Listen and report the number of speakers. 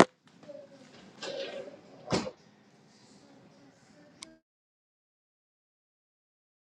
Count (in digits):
0